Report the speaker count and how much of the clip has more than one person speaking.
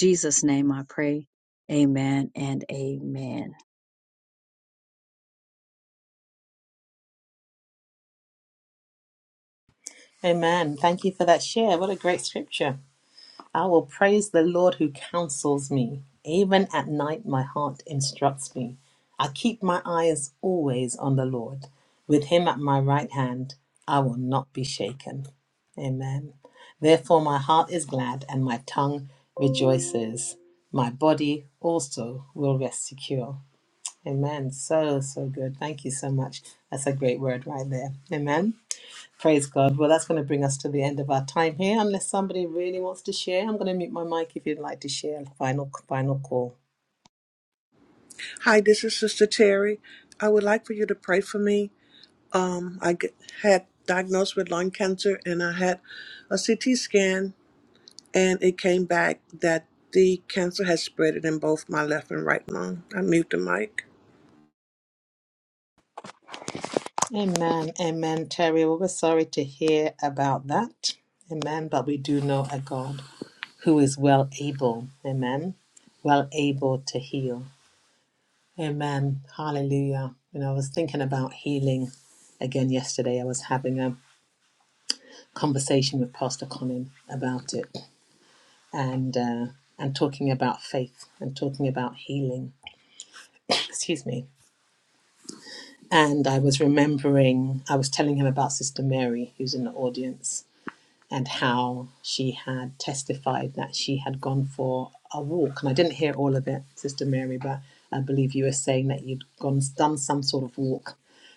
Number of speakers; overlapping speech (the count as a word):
three, no overlap